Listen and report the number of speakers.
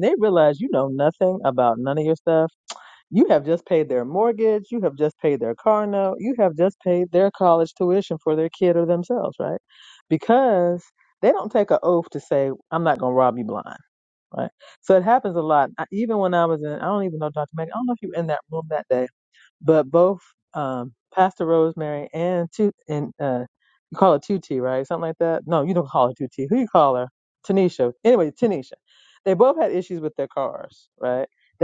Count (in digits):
1